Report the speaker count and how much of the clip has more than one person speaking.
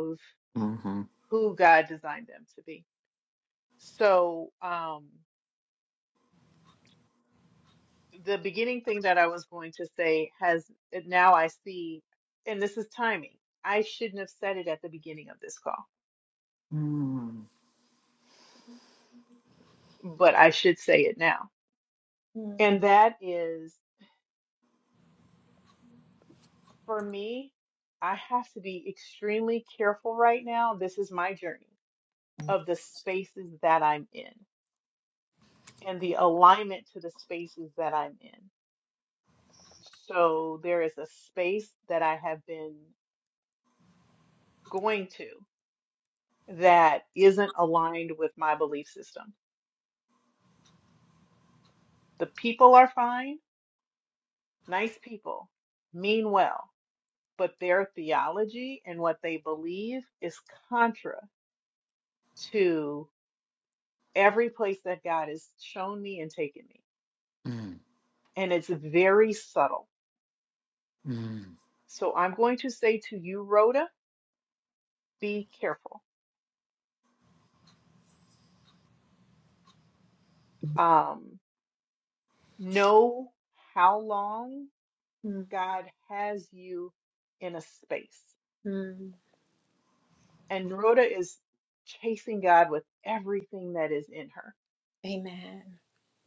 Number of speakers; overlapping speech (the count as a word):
three, under 1%